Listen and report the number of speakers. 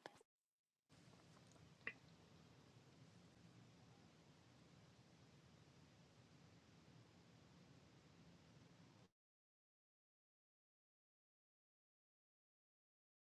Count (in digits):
0